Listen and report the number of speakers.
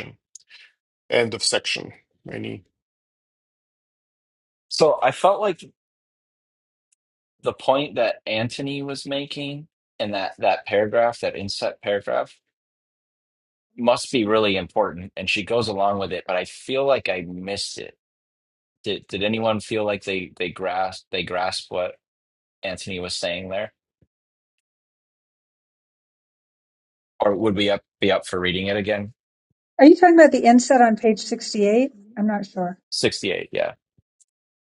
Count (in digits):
3